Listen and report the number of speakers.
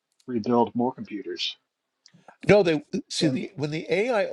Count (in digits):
2